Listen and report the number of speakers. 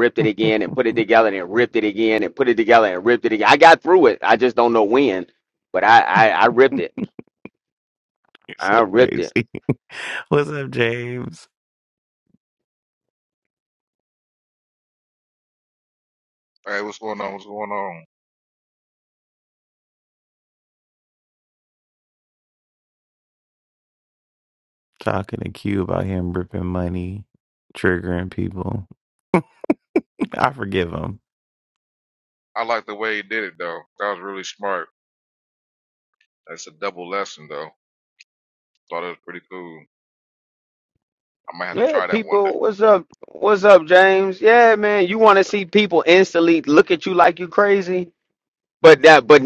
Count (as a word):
three